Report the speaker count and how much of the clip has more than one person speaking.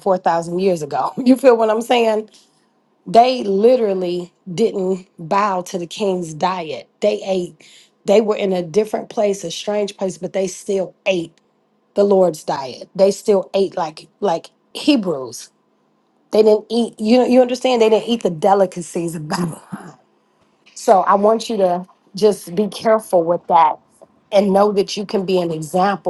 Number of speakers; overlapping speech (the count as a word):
one, no overlap